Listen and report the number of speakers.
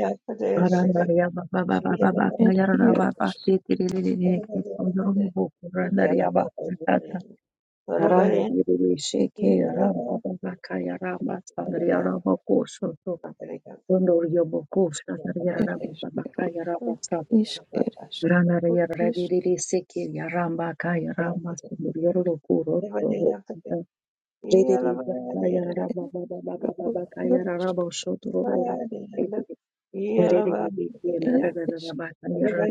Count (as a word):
three